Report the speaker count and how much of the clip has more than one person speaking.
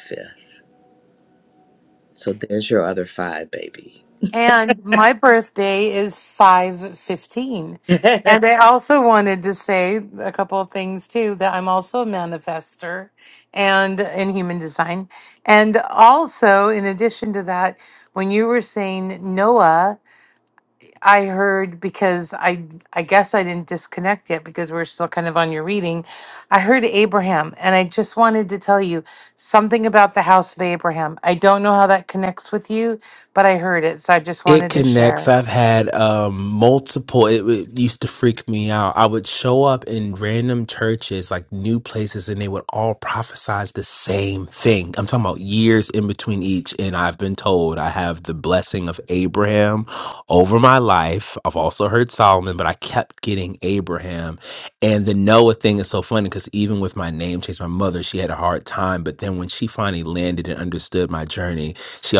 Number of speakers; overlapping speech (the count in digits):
3, about 1%